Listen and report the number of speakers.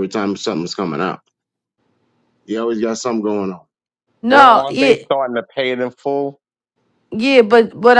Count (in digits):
3